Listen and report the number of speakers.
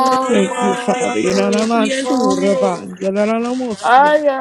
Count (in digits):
3